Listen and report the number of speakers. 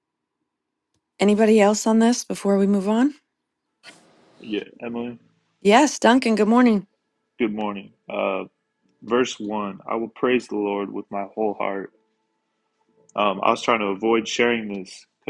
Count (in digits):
2